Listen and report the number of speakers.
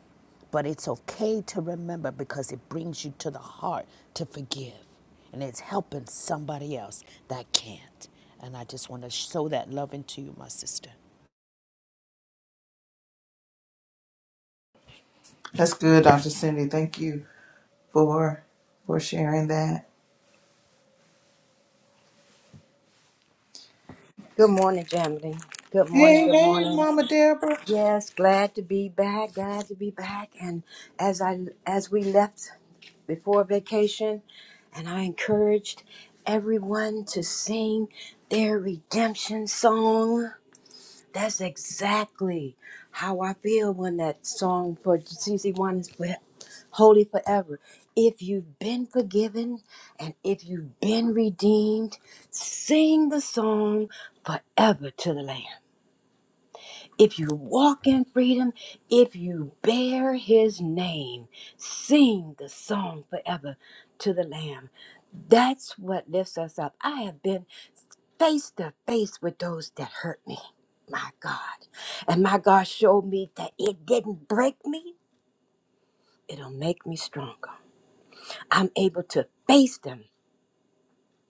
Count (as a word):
three